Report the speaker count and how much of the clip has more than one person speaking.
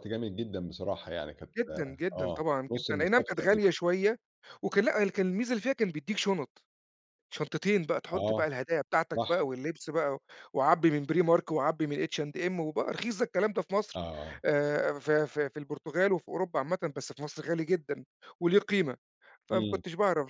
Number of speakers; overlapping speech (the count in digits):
2, about 12%